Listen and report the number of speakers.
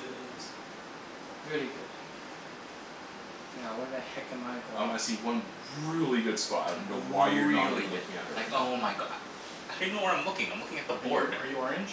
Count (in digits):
4